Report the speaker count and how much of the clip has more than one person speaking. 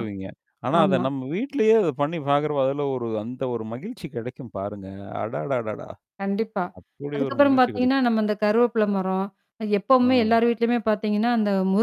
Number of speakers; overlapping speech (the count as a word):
two, about 12%